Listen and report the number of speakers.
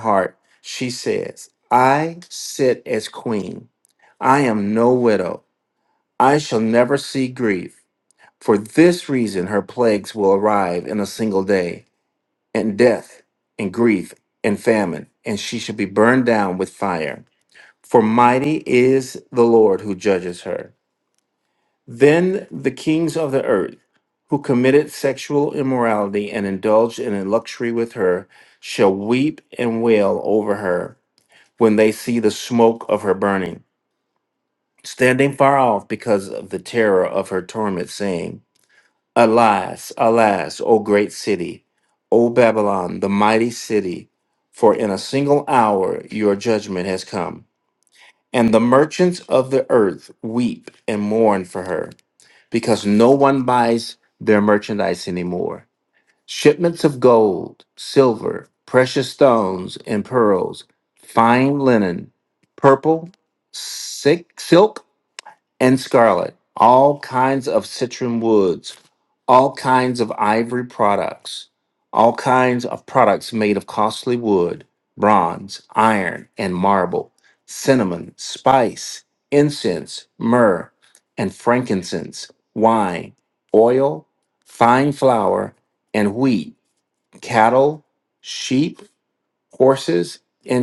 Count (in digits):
1